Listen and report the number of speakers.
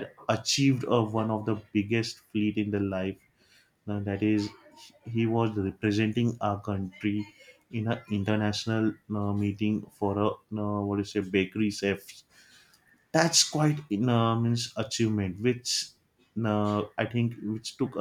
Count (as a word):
one